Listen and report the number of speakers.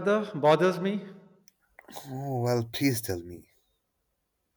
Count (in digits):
2